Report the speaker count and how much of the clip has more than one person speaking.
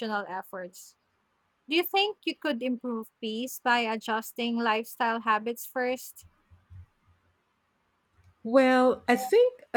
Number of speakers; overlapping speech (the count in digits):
2, no overlap